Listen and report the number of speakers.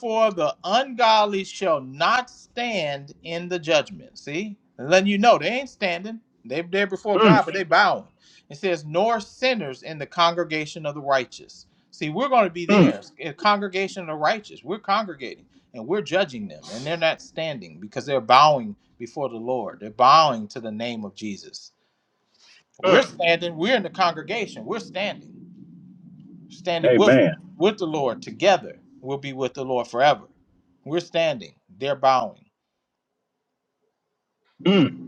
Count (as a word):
two